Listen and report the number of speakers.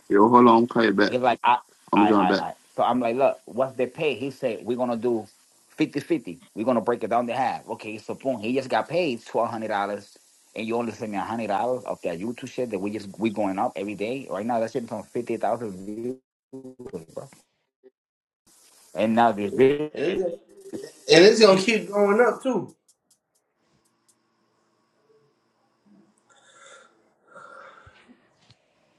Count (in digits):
3